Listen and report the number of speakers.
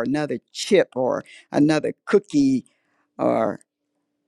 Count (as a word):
one